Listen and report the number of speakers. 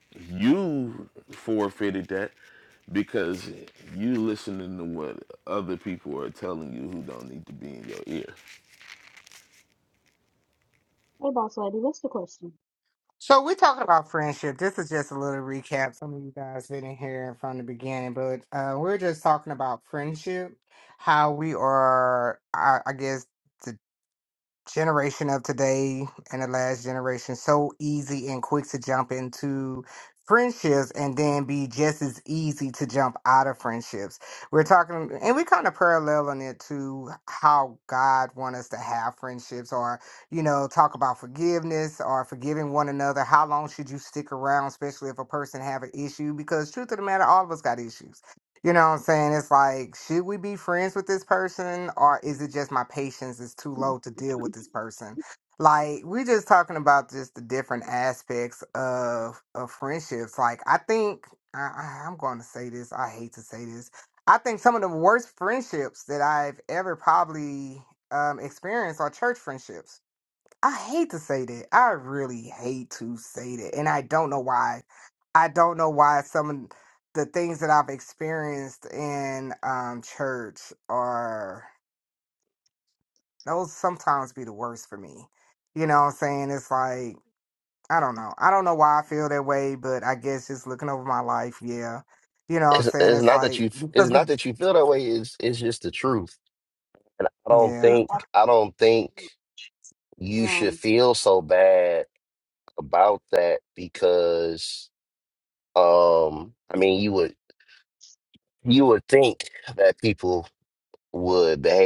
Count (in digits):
4